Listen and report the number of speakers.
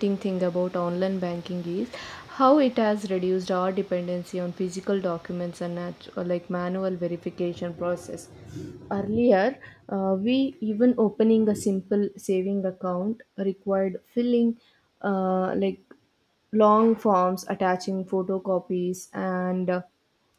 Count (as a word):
one